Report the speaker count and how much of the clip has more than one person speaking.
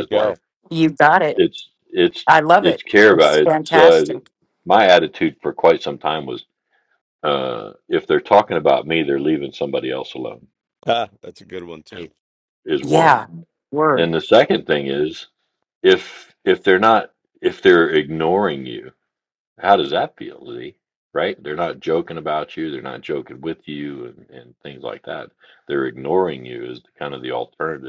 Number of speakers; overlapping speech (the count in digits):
3, about 7%